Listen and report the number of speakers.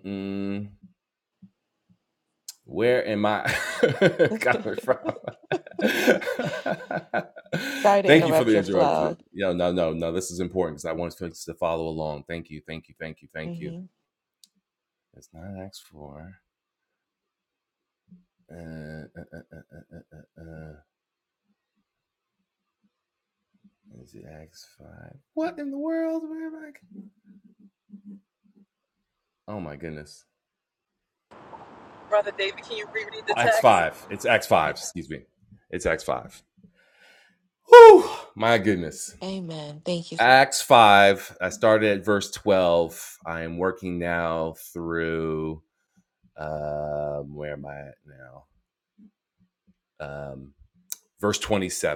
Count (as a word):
three